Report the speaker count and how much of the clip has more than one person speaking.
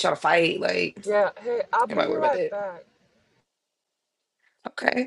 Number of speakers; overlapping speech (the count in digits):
2, about 12%